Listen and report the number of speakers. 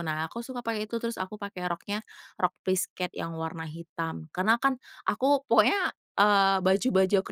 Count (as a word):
one